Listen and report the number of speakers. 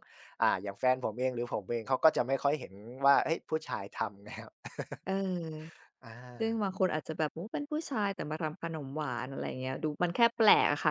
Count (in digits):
2